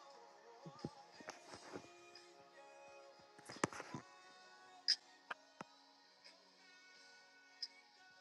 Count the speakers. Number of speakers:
0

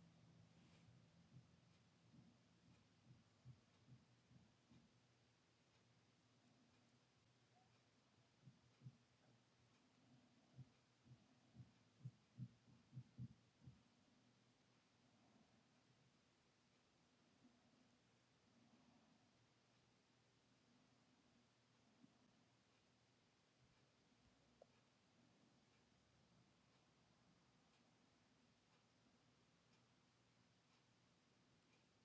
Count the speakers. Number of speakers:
0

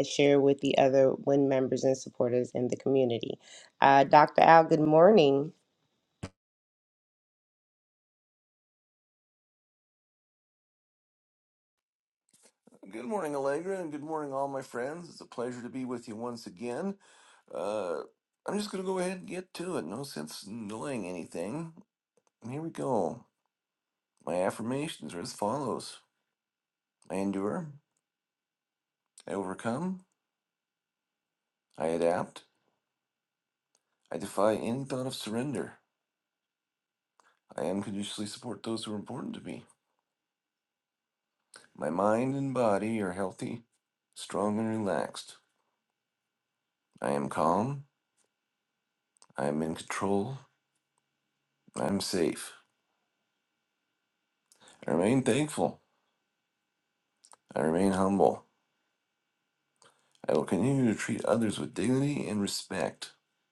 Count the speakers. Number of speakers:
2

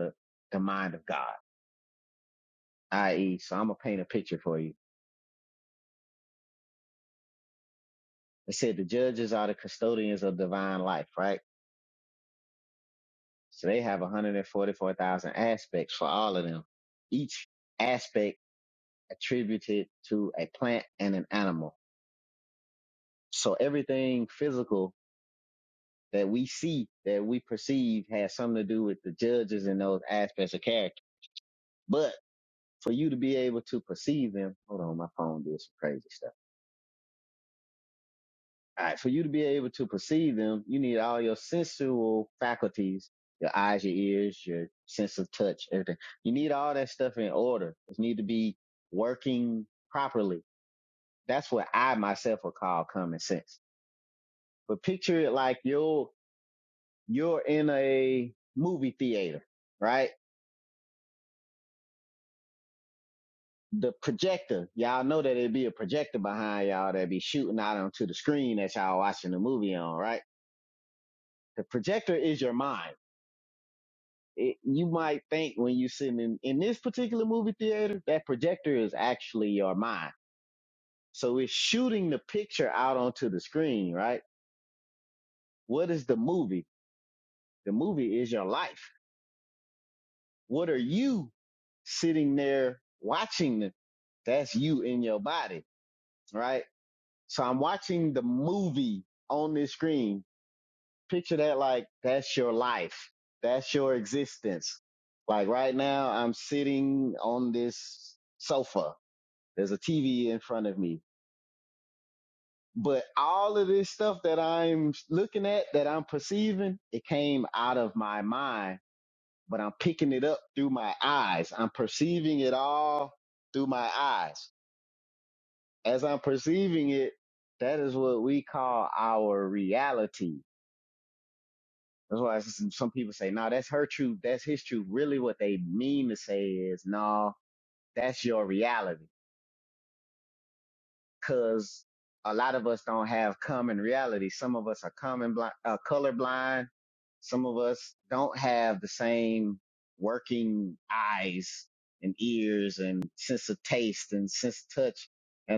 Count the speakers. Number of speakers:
1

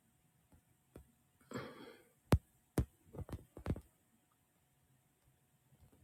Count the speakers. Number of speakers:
0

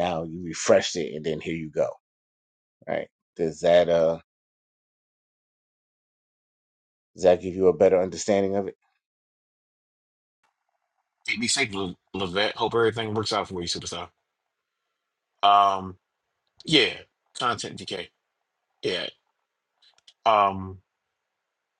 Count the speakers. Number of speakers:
2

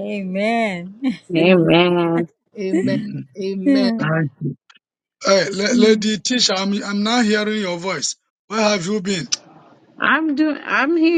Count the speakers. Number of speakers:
4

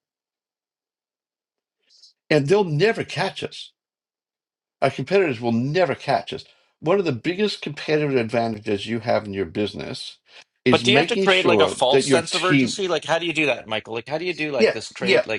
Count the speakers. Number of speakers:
2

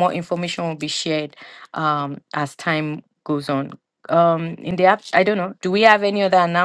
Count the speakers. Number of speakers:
1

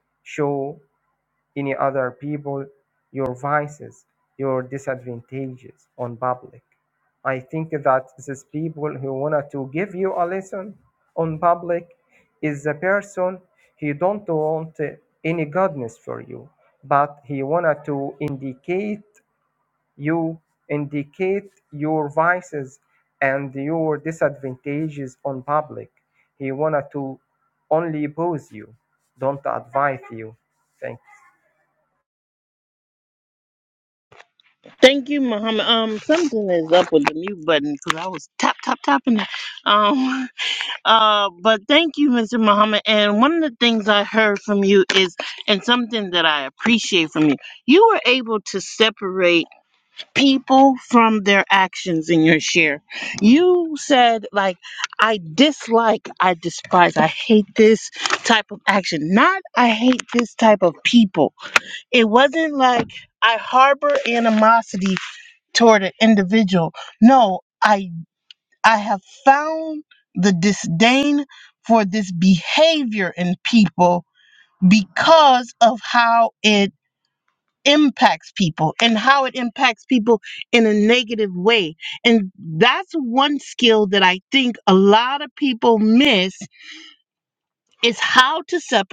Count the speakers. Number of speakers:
2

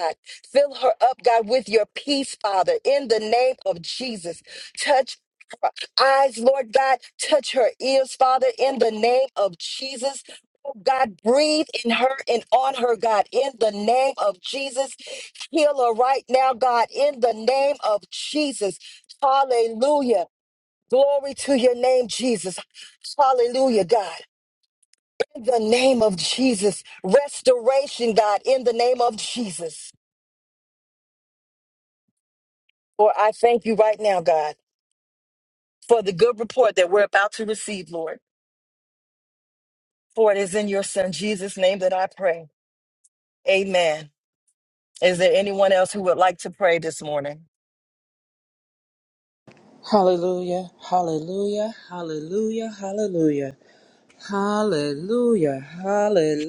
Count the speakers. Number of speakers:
2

